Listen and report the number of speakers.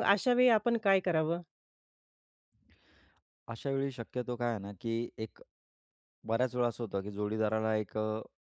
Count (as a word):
two